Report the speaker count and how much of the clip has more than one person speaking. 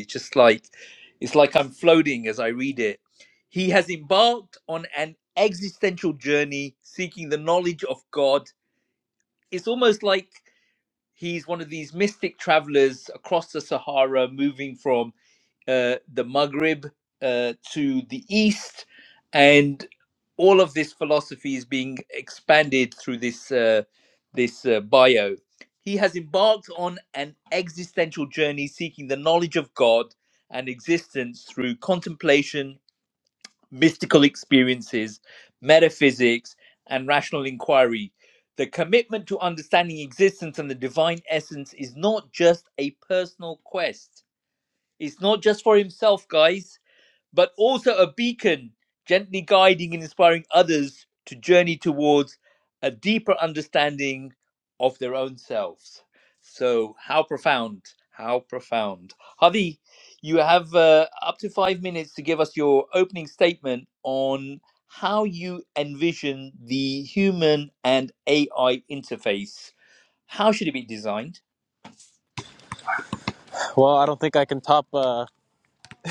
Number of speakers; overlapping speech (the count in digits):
2, no overlap